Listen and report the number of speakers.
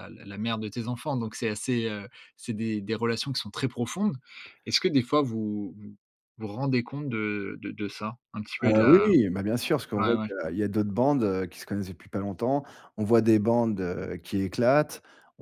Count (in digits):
2